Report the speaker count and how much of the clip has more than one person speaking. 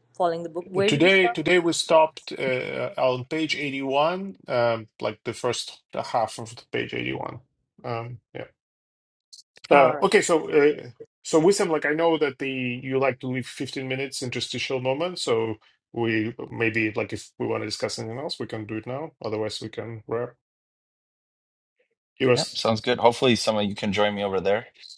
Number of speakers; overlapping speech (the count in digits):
3, about 4%